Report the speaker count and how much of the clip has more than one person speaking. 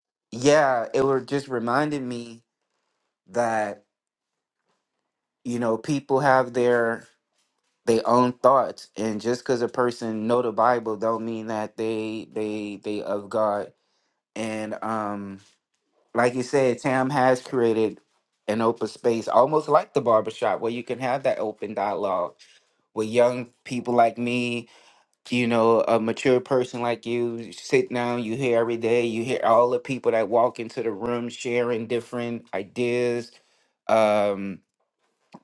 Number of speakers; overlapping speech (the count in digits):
1, no overlap